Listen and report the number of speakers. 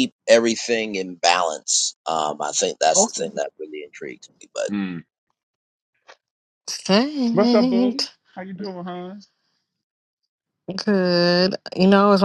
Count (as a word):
three